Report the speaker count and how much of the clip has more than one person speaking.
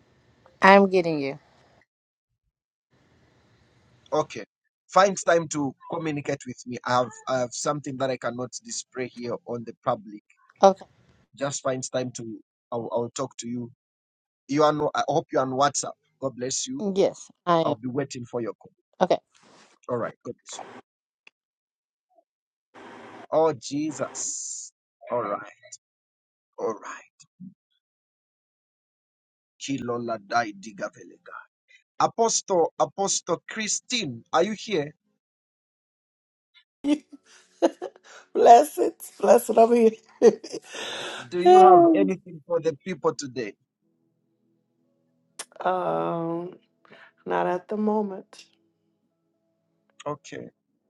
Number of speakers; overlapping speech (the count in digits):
3, under 1%